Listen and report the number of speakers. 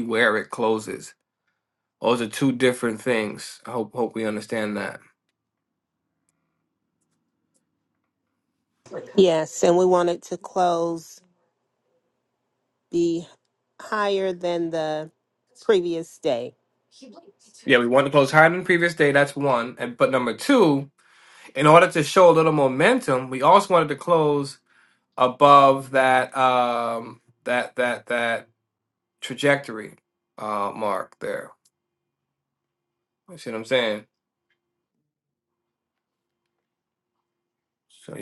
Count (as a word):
two